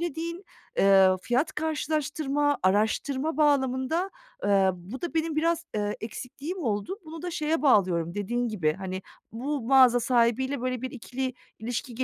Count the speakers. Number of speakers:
one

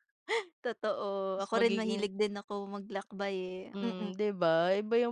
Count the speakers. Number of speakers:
two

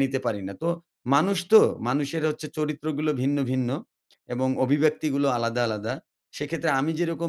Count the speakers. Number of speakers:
one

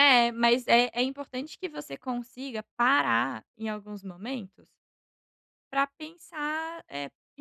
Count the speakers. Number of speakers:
one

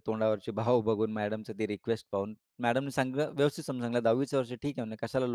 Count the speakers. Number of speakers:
one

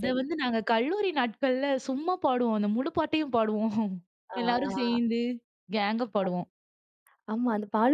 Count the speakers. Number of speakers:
two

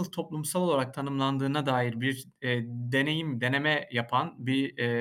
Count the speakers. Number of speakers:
one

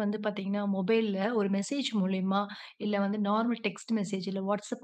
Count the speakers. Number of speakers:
one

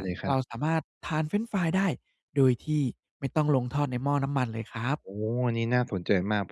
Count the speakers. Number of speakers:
two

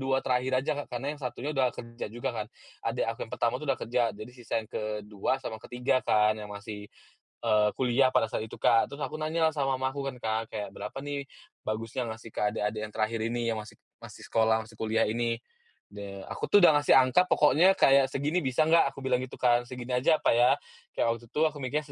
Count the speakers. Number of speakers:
one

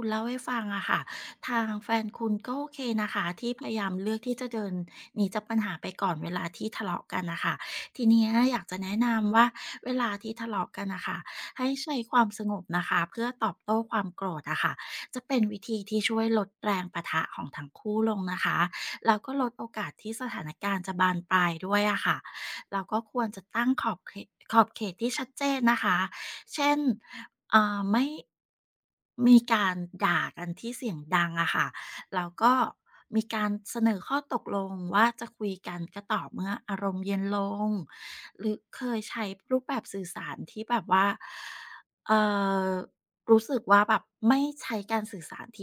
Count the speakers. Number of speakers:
one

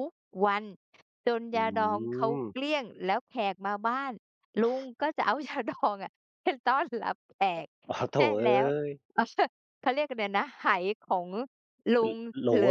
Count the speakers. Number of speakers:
two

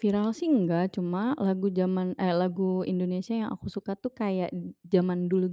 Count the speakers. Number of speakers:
one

